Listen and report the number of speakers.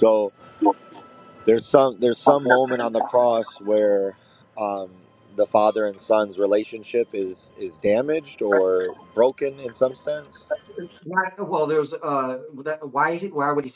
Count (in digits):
2